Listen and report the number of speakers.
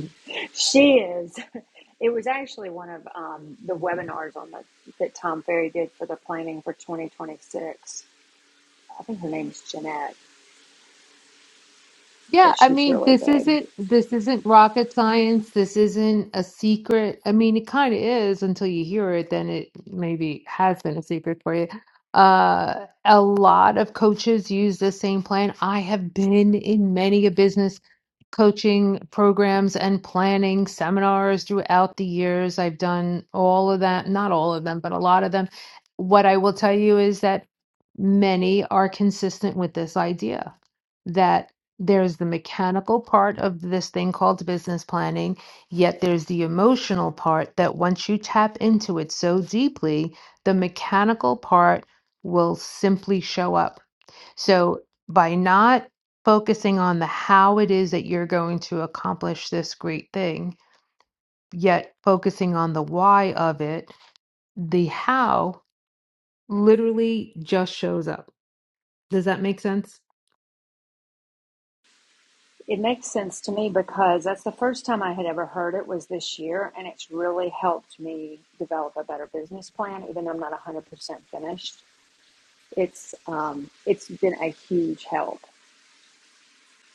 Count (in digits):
2